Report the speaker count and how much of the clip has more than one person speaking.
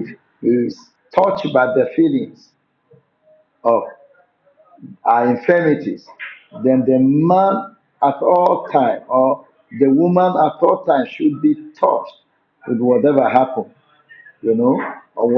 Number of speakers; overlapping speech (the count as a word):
one, no overlap